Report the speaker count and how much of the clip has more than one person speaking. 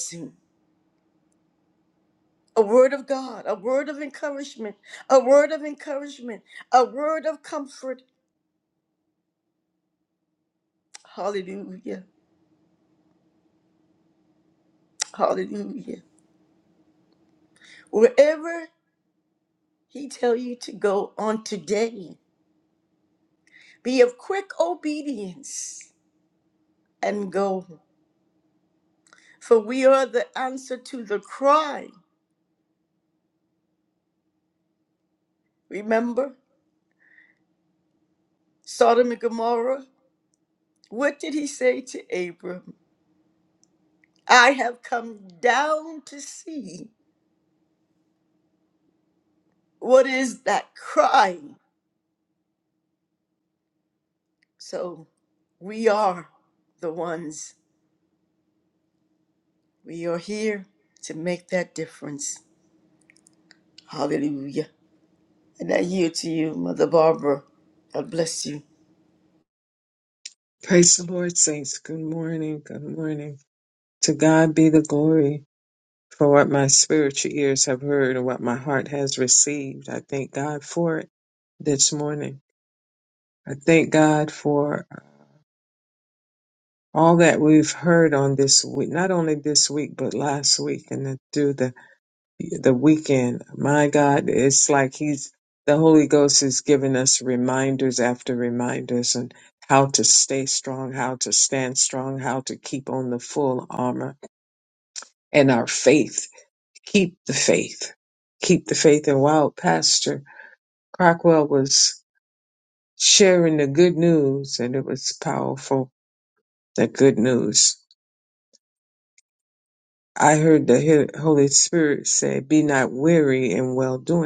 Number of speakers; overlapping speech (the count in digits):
2, no overlap